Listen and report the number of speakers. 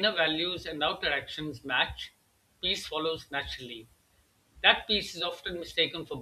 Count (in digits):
1